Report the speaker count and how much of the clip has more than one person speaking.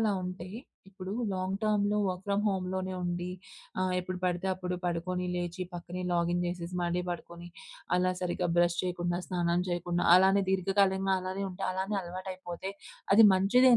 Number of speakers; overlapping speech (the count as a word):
one, no overlap